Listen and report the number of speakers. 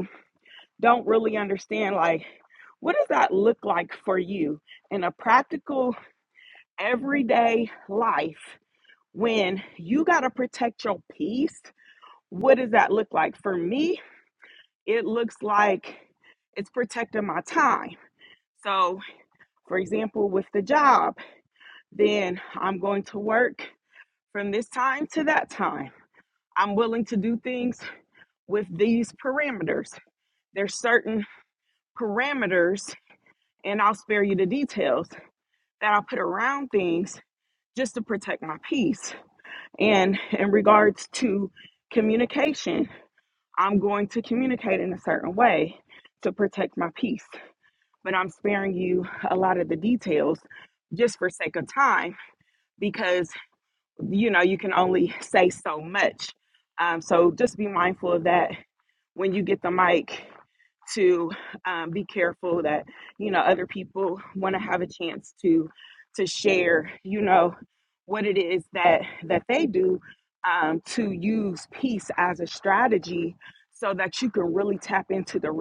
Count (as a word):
one